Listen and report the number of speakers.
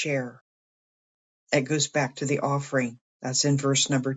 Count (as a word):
one